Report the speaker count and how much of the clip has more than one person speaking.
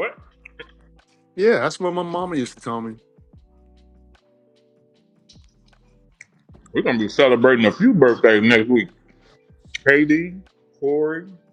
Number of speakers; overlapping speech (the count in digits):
2, no overlap